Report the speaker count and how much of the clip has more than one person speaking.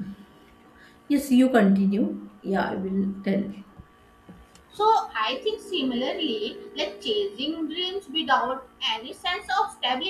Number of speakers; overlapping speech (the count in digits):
2, no overlap